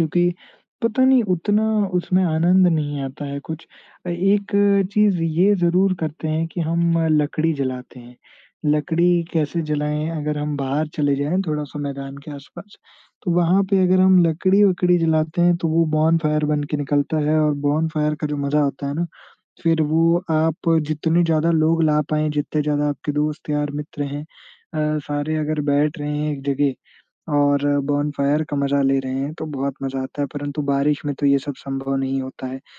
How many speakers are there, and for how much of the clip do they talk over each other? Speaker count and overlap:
one, no overlap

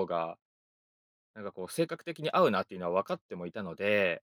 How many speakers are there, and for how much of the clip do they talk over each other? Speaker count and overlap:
one, no overlap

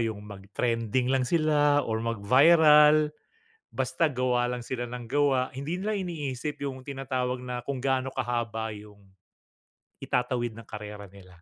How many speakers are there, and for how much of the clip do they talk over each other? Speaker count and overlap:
one, no overlap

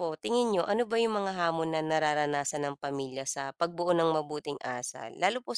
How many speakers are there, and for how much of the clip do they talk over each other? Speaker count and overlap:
one, no overlap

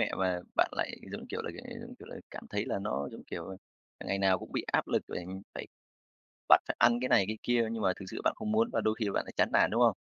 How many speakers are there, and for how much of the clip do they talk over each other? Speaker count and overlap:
one, no overlap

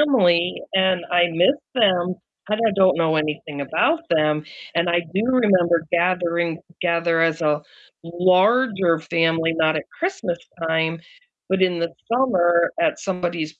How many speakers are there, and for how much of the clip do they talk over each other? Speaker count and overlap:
one, no overlap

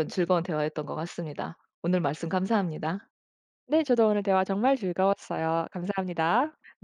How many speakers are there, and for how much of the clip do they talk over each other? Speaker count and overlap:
two, no overlap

